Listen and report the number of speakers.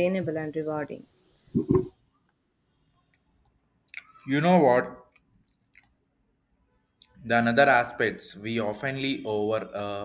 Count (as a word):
two